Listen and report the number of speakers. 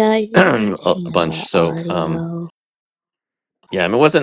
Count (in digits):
2